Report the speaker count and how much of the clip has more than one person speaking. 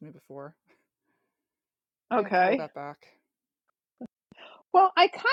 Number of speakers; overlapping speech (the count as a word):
two, about 9%